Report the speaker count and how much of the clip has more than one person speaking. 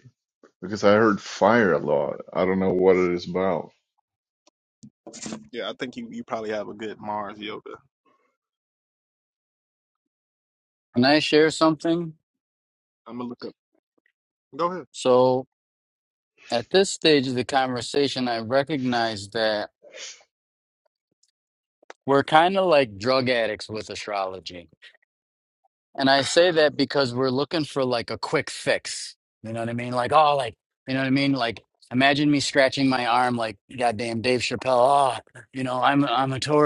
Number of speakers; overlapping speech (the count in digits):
3, about 1%